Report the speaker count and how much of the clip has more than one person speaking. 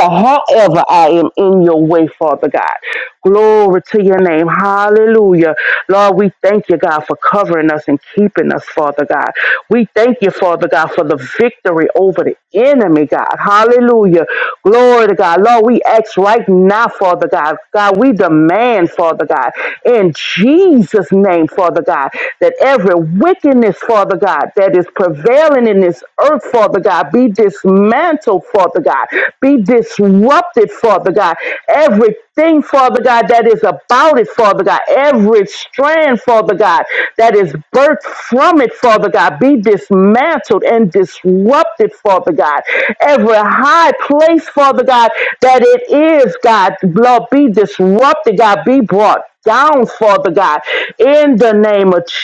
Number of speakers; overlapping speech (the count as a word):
one, no overlap